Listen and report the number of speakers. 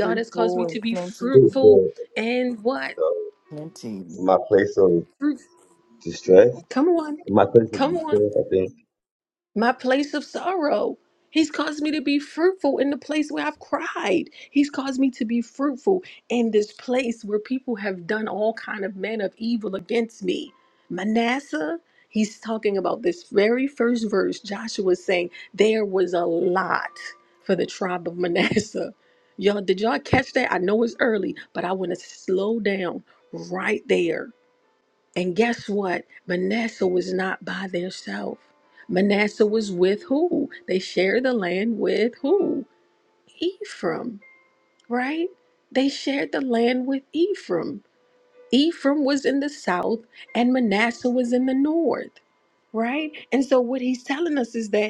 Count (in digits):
3